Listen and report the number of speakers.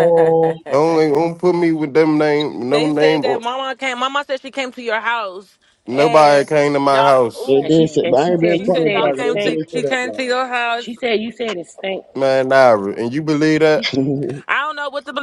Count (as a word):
four